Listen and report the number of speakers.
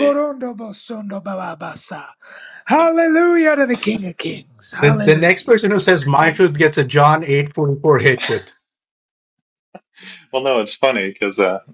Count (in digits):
3